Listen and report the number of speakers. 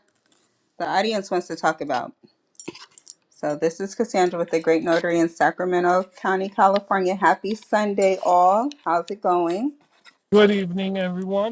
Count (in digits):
2